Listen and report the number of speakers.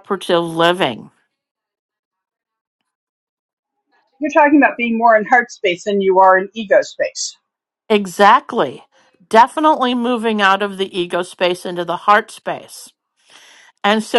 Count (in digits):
2